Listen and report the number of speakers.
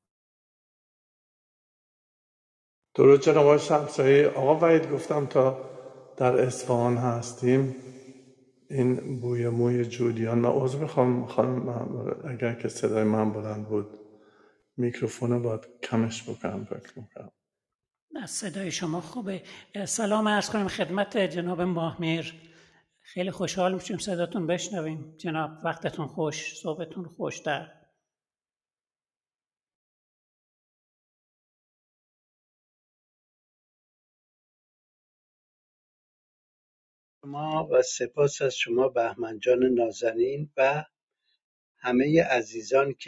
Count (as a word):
three